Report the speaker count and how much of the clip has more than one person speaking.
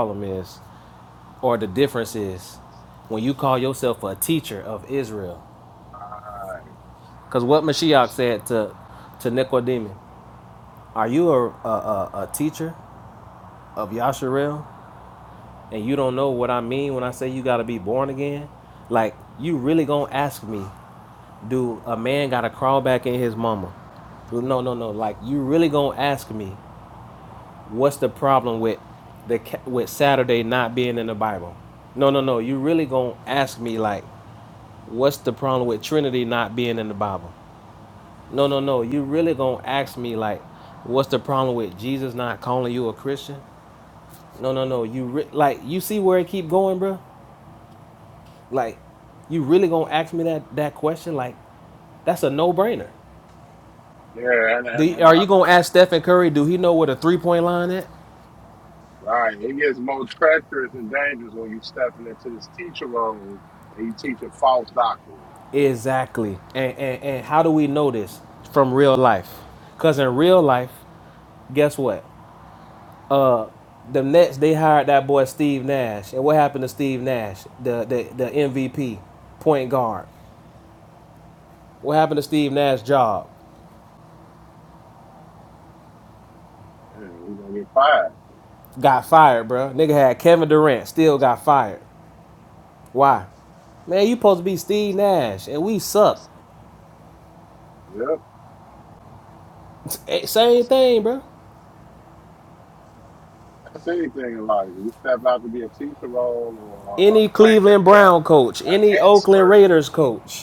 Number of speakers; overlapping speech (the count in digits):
2, about 2%